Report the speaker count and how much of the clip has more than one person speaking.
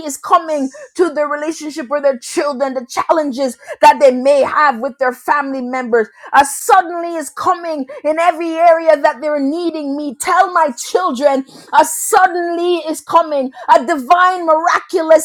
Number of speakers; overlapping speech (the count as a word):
one, no overlap